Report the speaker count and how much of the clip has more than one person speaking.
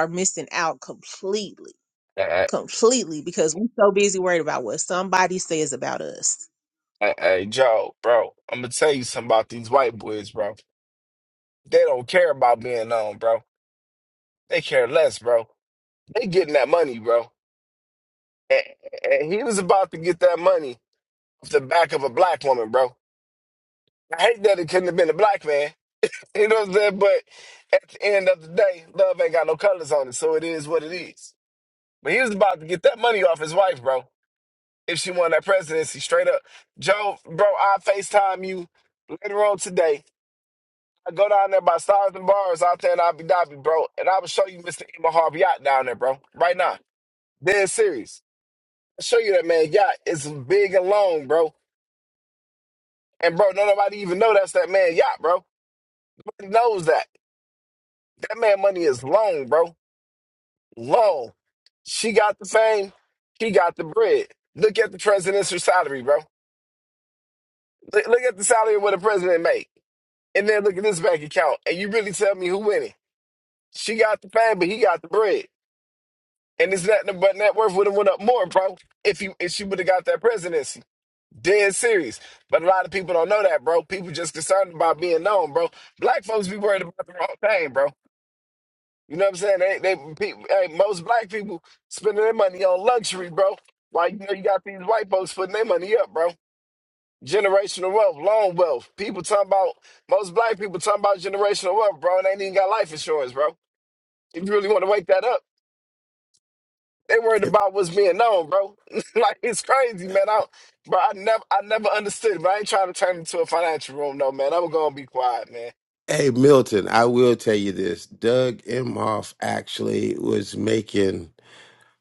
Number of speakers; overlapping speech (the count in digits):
3, under 1%